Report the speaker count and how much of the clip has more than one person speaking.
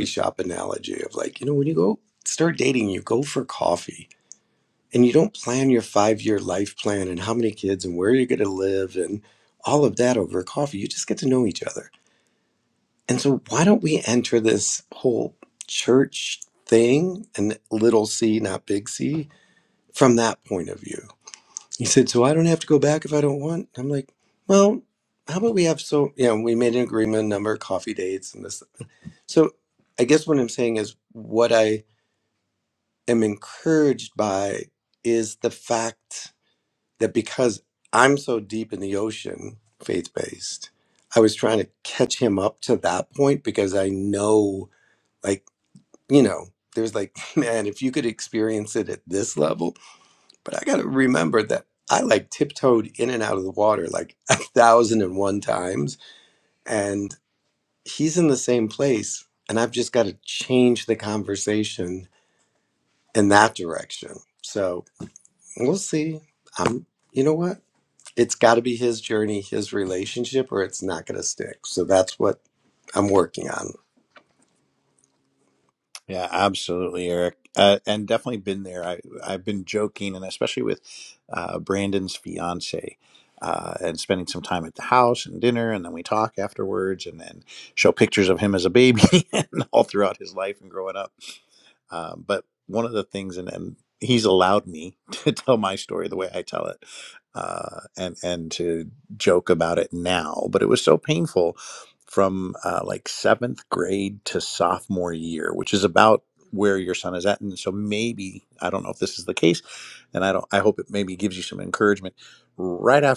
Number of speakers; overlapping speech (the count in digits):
2, no overlap